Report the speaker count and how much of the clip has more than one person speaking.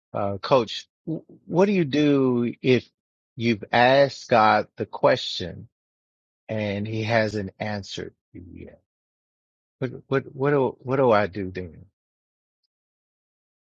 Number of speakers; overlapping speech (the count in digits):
1, no overlap